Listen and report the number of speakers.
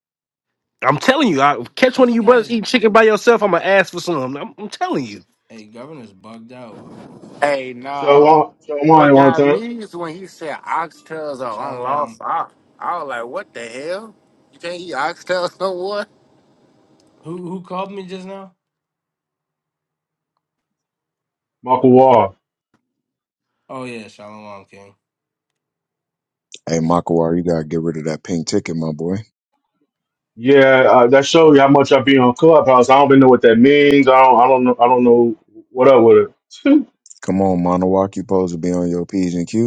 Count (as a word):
five